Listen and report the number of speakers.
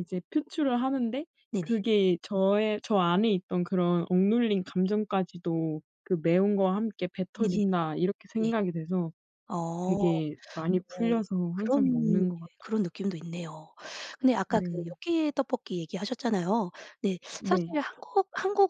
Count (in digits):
2